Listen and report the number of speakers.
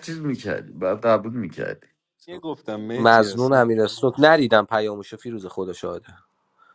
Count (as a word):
three